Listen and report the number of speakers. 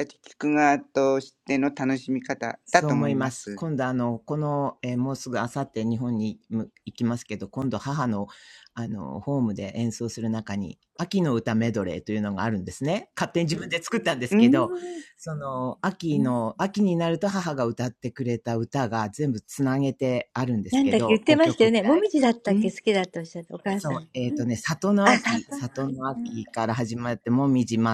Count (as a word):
three